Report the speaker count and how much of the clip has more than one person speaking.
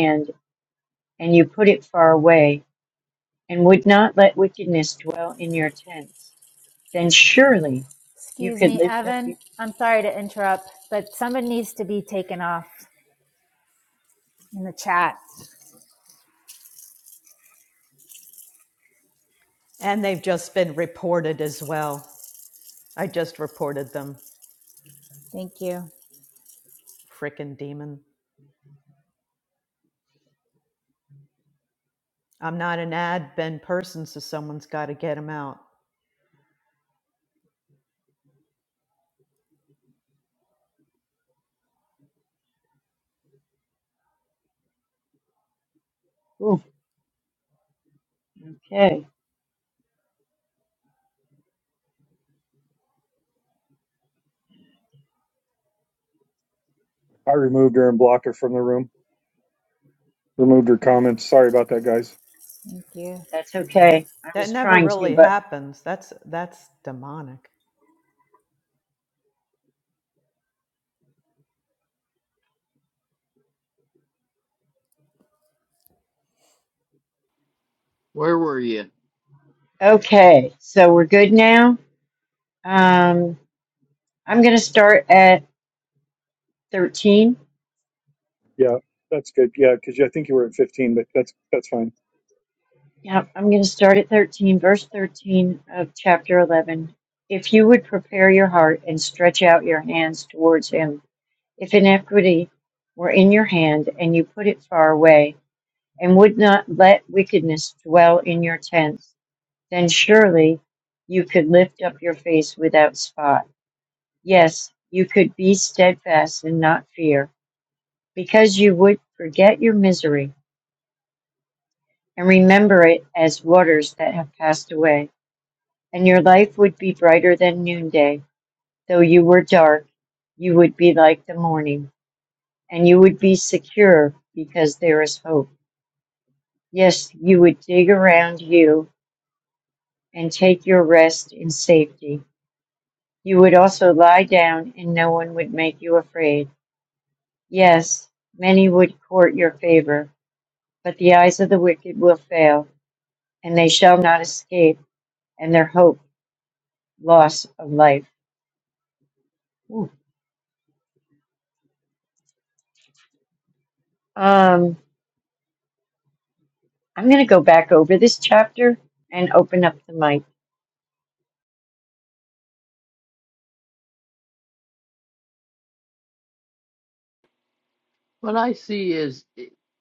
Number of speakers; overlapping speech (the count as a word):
five, about 1%